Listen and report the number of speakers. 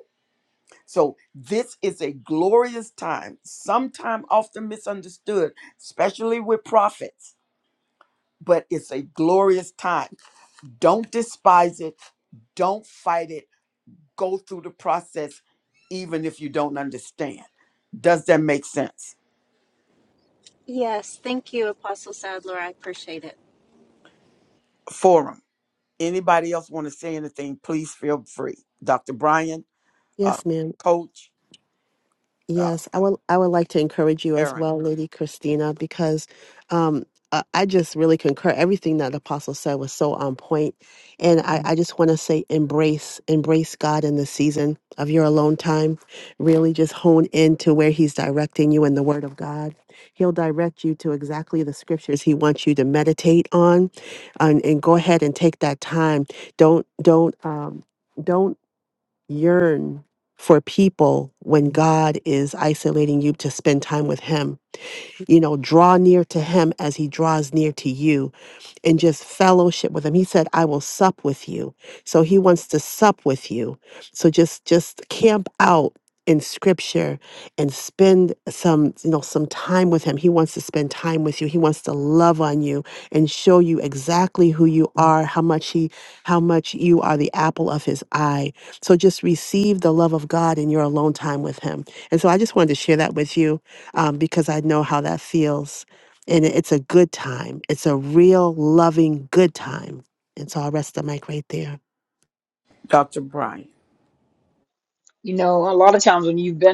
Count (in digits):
4